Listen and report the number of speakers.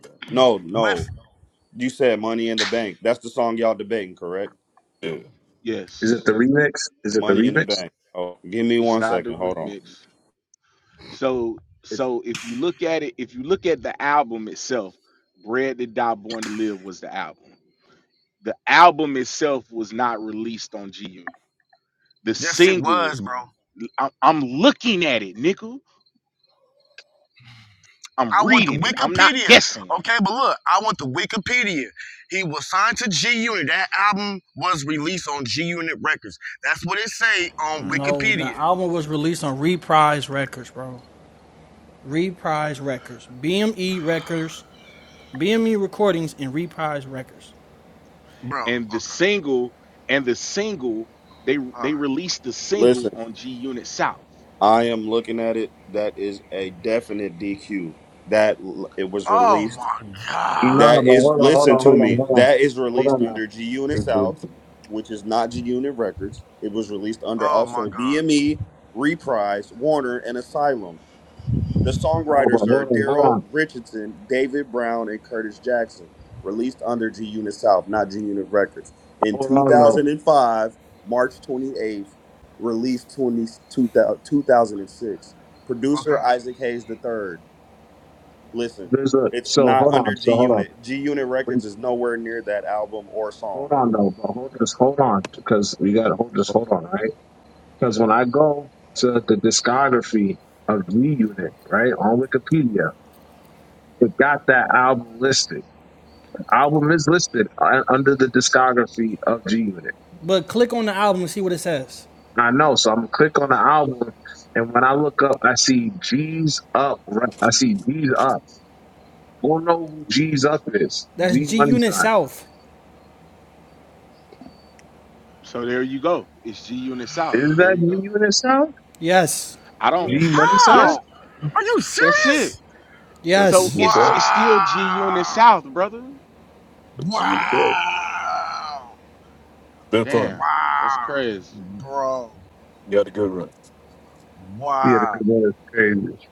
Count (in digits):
6